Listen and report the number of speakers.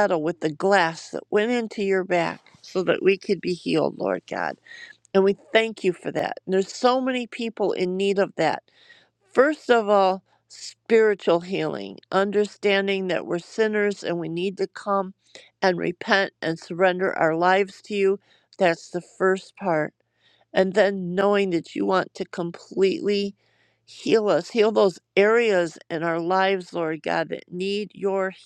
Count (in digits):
1